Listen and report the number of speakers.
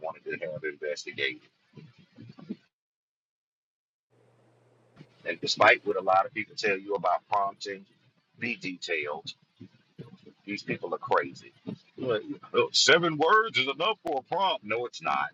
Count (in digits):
1